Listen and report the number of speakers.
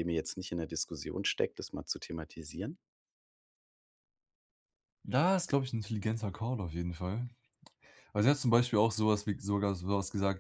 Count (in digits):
2